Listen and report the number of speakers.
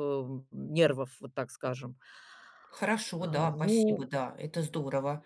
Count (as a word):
two